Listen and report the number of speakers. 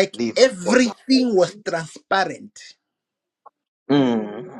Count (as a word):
two